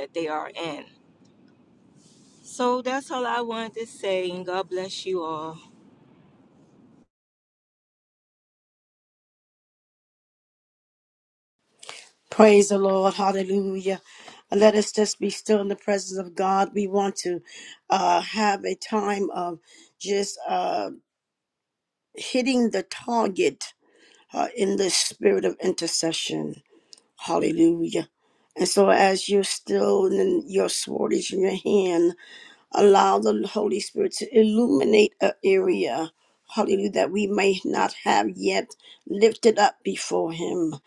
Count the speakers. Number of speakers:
2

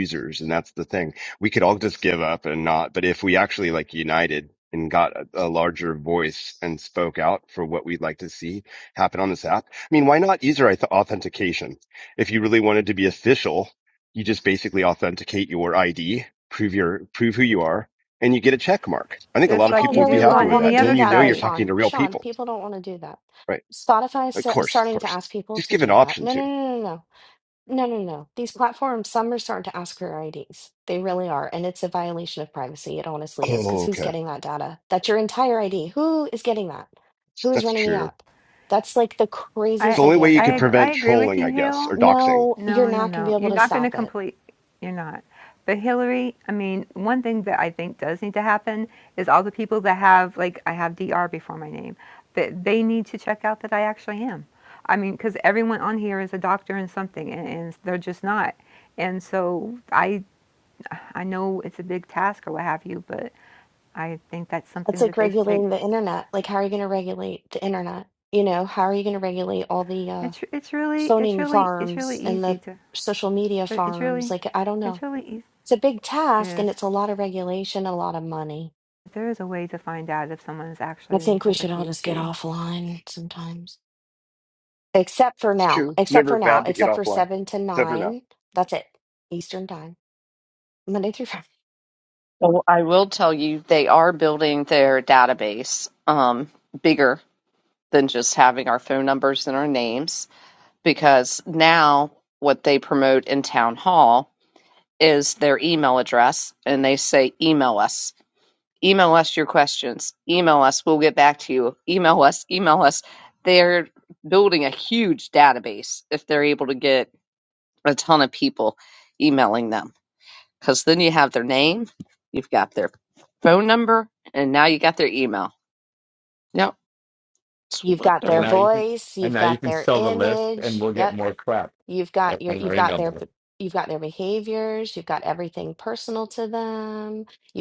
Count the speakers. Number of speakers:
5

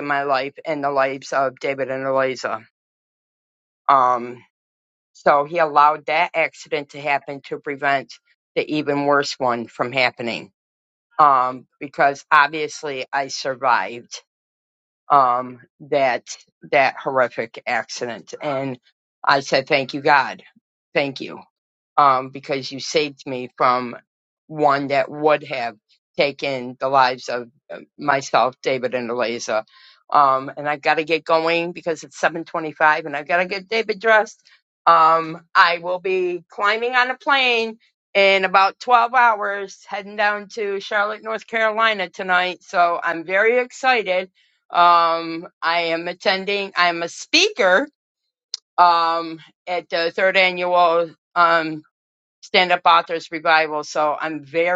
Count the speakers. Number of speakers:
1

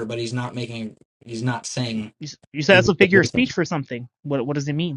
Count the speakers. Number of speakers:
2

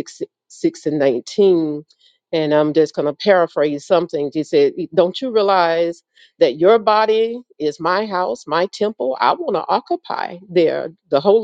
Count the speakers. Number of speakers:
1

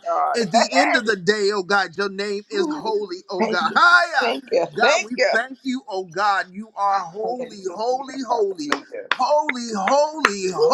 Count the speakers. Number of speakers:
2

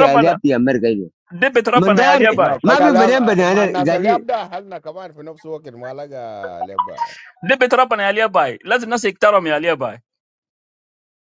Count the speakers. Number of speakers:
3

